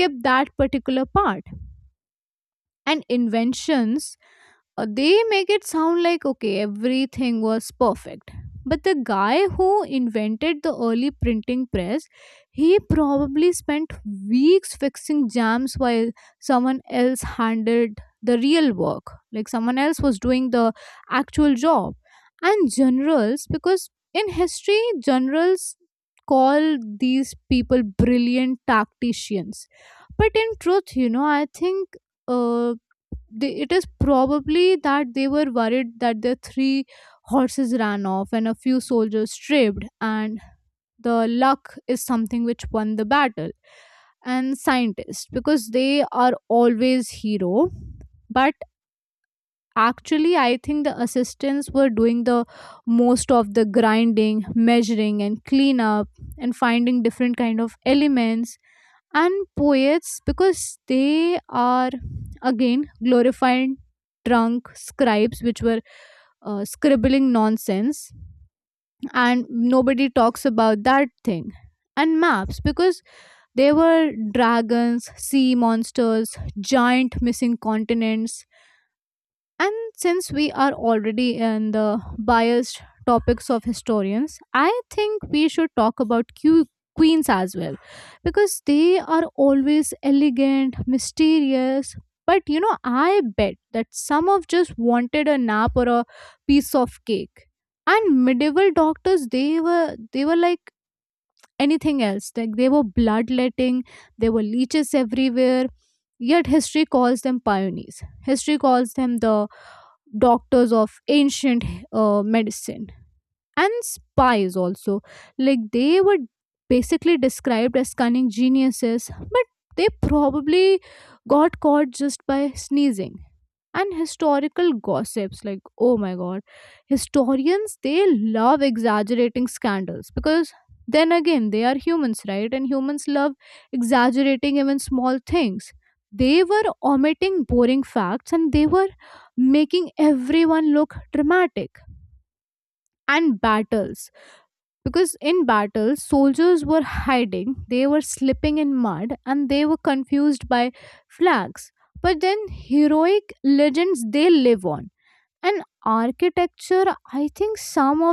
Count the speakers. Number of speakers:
1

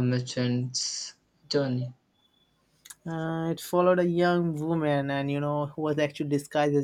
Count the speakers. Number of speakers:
2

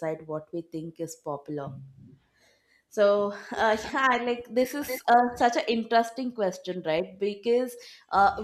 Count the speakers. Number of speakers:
1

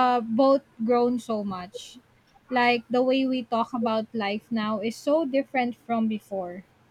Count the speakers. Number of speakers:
1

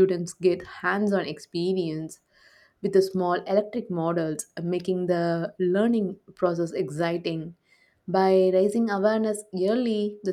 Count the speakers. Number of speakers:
1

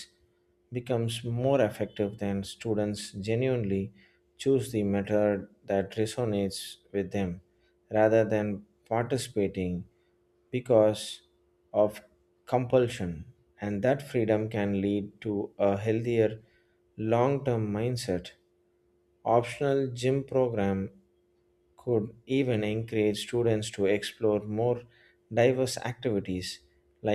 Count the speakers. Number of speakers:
1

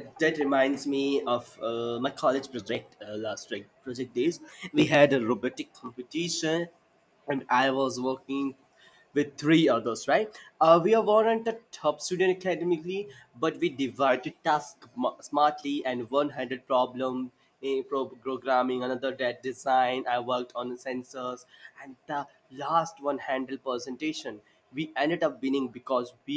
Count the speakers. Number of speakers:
1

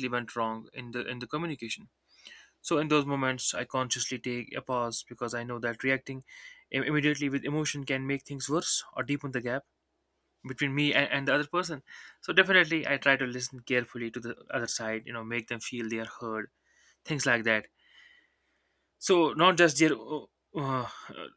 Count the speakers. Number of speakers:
1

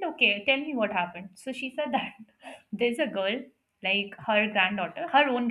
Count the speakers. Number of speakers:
1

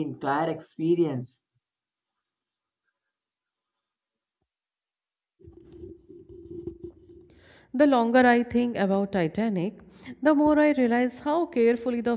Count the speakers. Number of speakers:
2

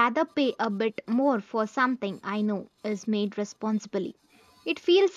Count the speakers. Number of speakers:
1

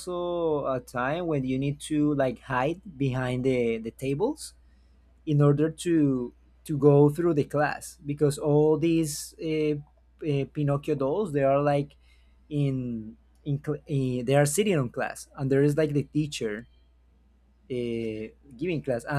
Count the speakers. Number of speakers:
1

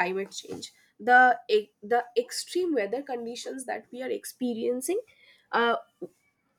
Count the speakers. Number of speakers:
1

